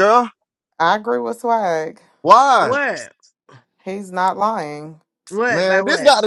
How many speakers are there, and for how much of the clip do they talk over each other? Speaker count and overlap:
three, about 12%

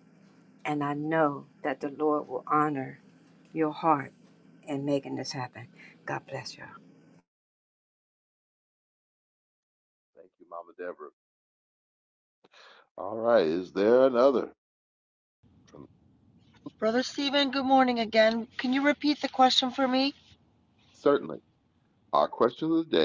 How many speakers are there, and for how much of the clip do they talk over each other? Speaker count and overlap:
three, no overlap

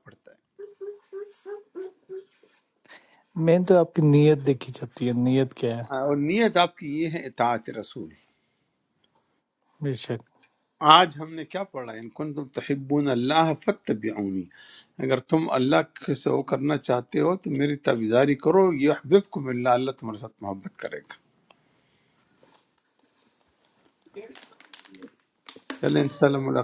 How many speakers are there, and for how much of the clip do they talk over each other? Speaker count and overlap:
two, no overlap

